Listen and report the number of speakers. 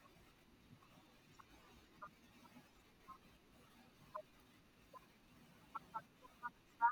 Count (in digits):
0